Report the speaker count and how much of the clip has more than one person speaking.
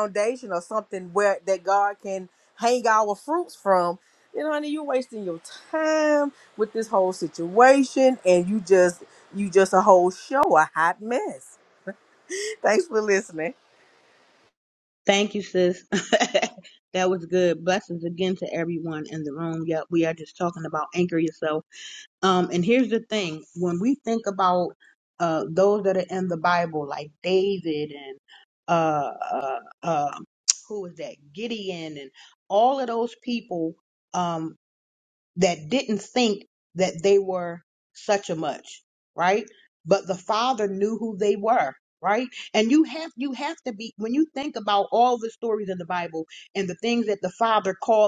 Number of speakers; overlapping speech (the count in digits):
2, no overlap